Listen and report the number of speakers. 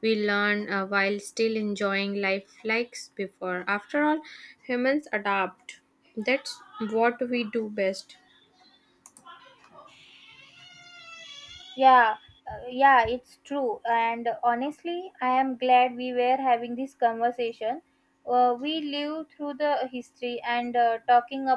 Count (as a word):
two